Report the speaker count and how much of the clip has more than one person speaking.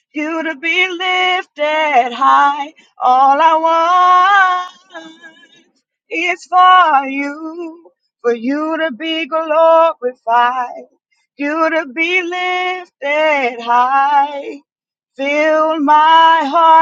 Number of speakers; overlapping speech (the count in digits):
1, no overlap